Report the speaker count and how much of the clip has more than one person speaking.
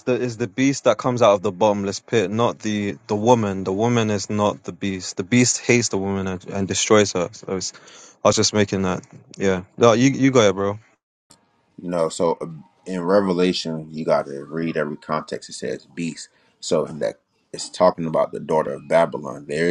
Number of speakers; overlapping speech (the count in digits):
2, no overlap